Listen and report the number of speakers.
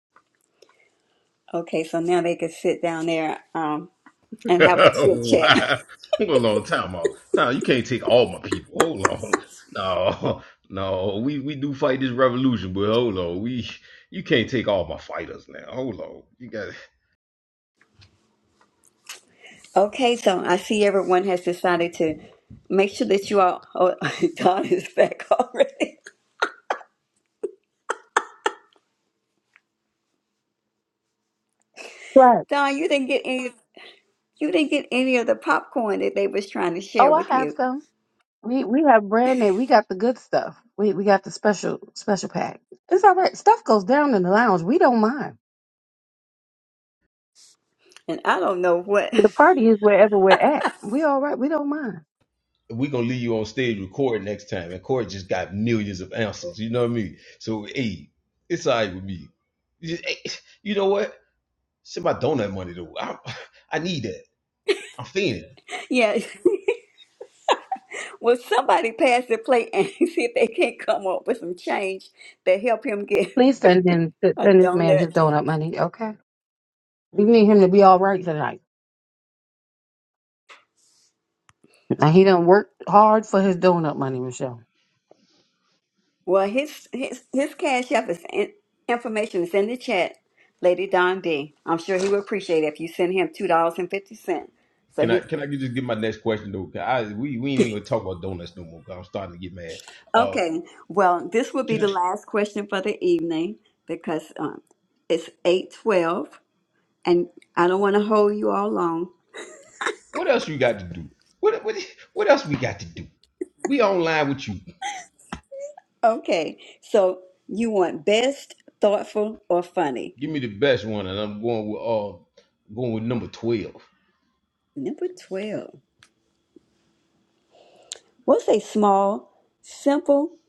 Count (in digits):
3